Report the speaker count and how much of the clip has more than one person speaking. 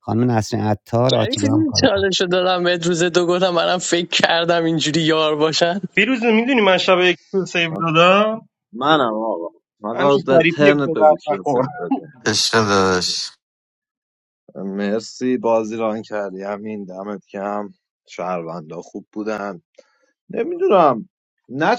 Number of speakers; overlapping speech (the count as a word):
five, about 12%